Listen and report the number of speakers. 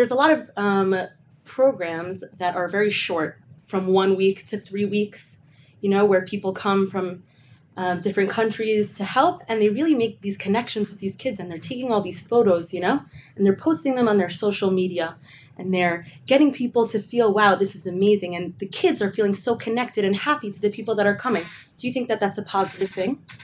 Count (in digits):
1